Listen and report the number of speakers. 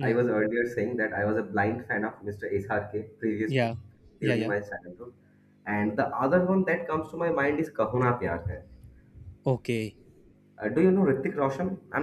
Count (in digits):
2